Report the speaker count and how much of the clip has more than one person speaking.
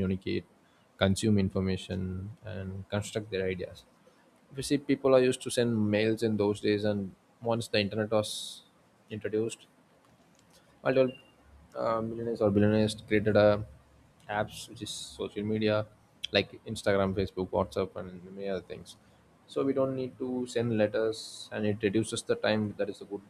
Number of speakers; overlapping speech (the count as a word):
one, no overlap